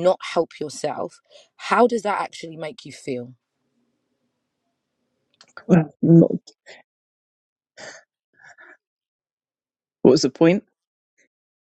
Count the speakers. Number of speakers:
two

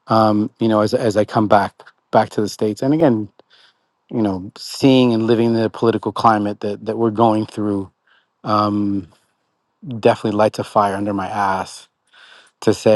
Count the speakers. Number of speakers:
one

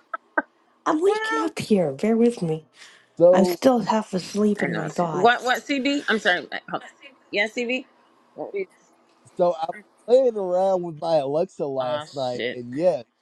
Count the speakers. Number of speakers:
three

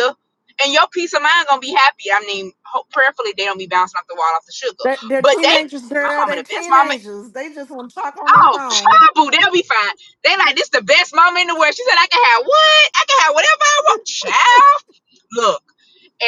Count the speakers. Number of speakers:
two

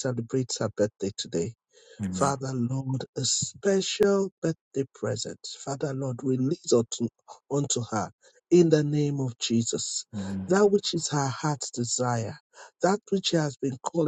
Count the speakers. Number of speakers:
one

